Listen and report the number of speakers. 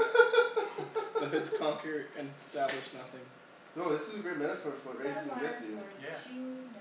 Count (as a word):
three